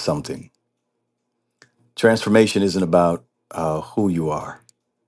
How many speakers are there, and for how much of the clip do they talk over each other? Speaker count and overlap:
1, no overlap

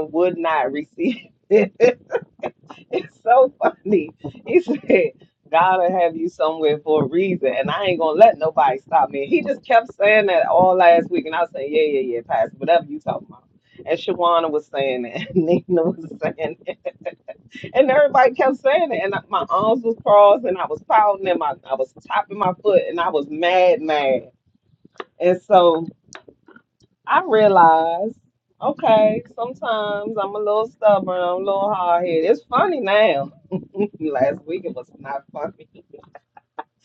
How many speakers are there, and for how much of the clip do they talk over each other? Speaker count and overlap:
1, no overlap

